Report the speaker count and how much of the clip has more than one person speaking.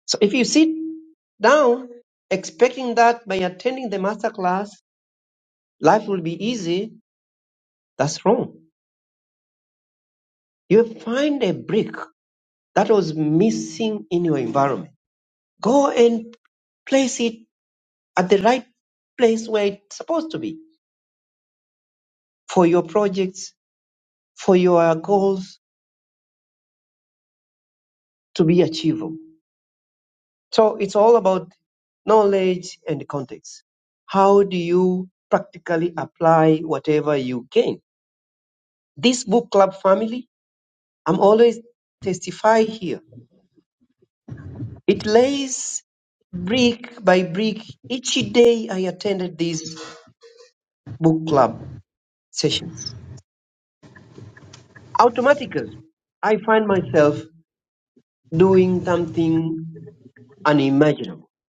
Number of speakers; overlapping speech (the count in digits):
1, no overlap